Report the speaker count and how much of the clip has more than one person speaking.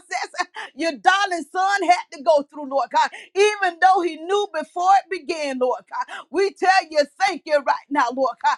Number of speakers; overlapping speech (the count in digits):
1, no overlap